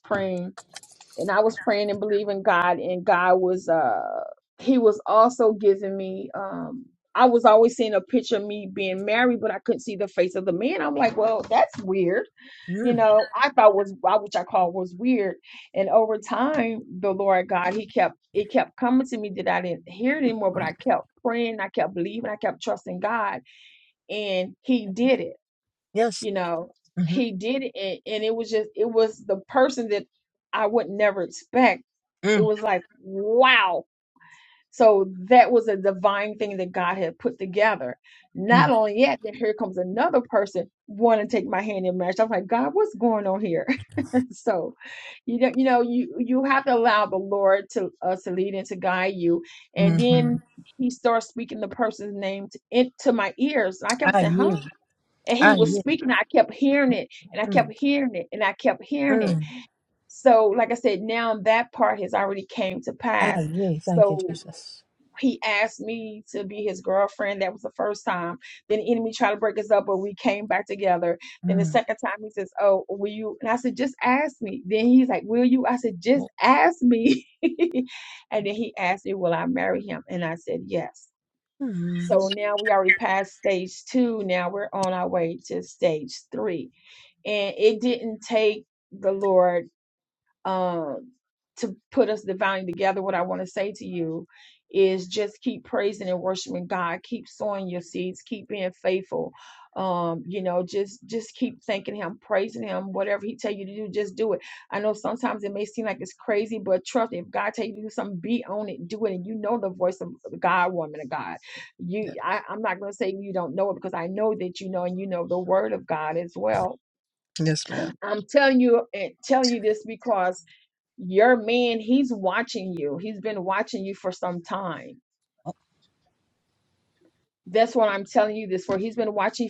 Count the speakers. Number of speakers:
2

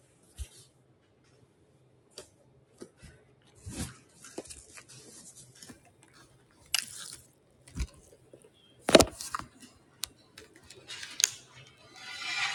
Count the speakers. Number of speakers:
0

